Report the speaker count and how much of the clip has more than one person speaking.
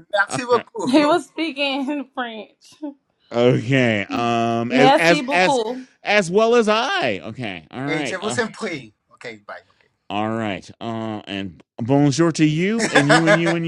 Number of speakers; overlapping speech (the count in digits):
3, about 12%